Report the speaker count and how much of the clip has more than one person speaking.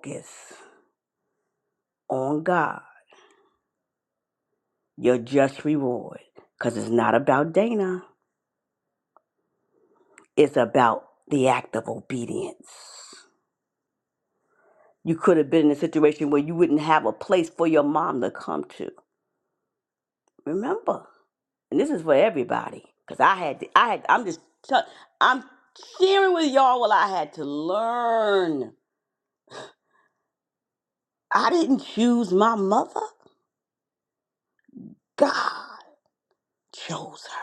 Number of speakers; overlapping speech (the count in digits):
1, no overlap